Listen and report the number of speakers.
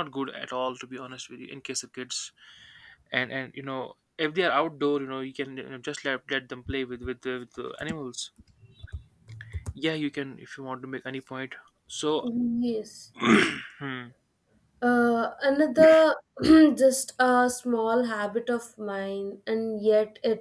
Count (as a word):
two